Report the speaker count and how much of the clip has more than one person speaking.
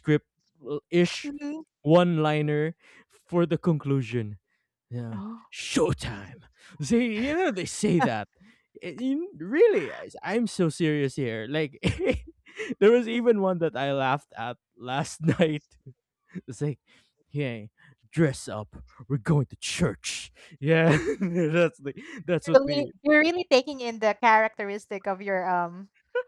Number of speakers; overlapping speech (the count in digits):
2, about 2%